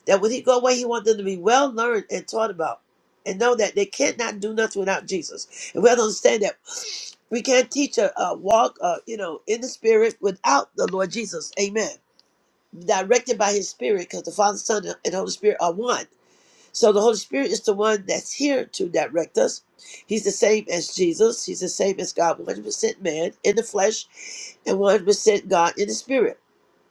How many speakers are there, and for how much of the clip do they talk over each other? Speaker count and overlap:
one, no overlap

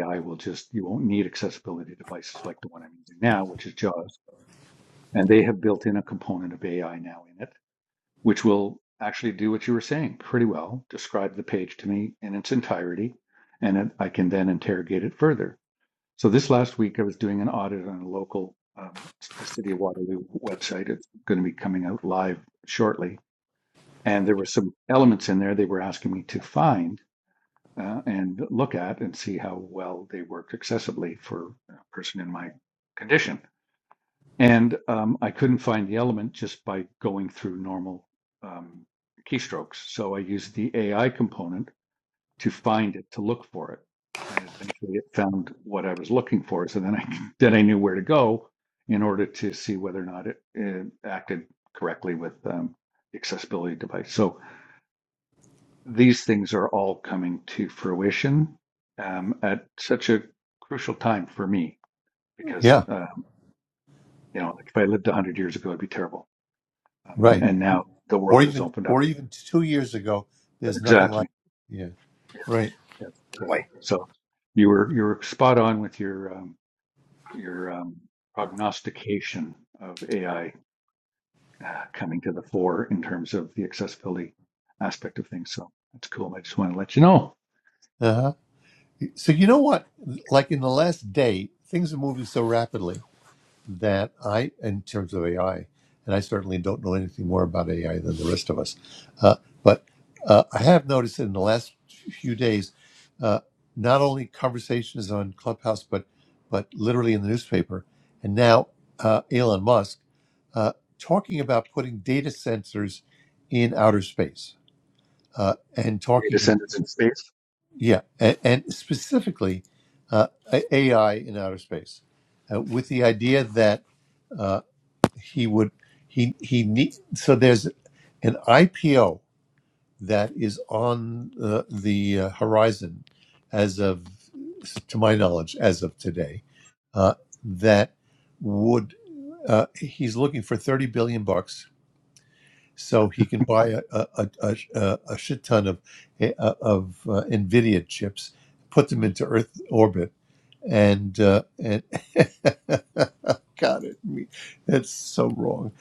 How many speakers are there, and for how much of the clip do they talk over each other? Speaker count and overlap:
two, about 1%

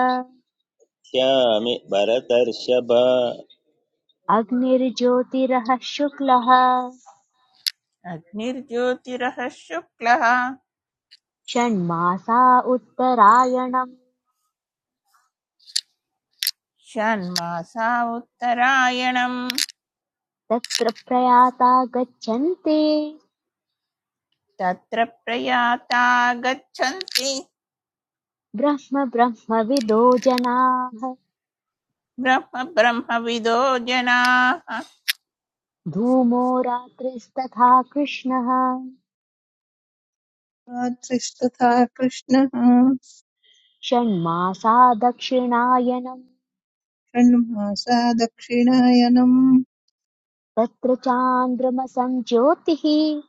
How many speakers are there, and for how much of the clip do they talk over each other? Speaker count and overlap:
four, no overlap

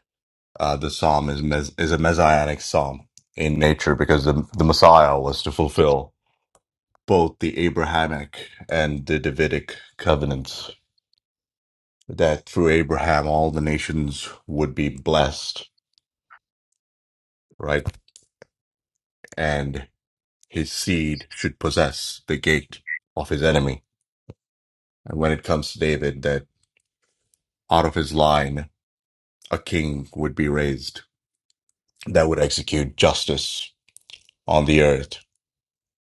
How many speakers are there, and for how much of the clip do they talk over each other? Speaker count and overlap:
one, no overlap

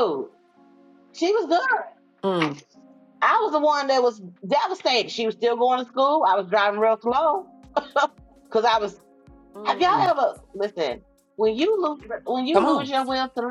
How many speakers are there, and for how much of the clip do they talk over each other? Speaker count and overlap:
two, about 5%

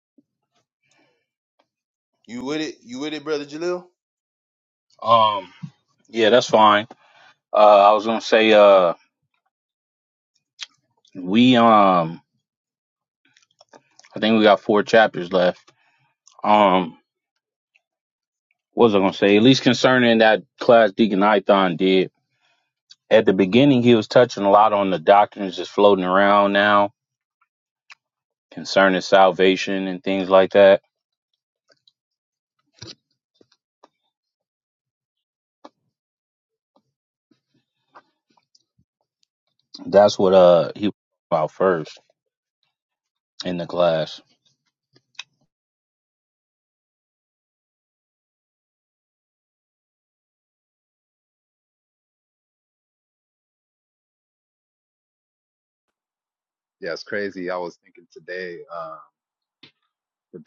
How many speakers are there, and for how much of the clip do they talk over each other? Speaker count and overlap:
three, no overlap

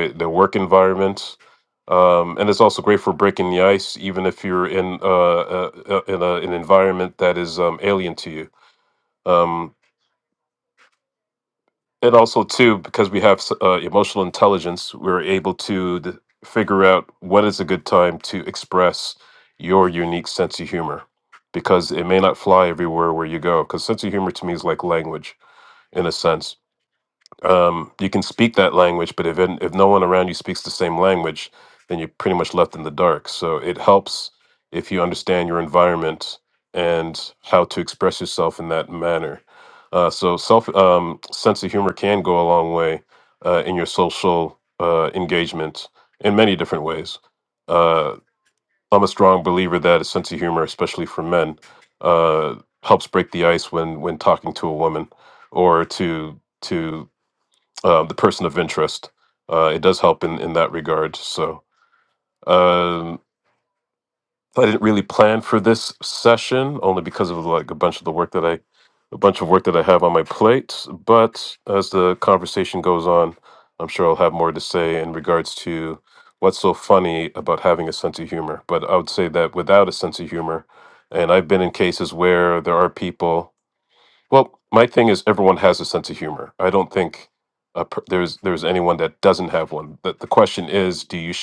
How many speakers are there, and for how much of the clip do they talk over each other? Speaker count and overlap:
one, no overlap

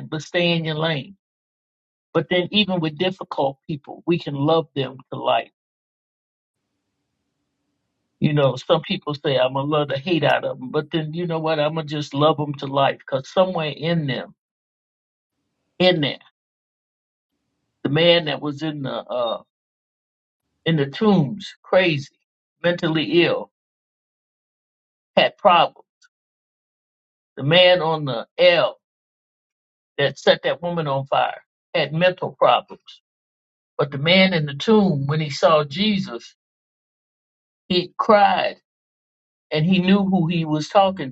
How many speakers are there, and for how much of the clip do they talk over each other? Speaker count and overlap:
one, no overlap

